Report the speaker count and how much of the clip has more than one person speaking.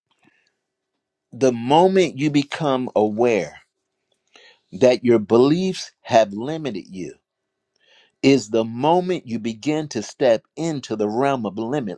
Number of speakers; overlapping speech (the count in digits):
1, no overlap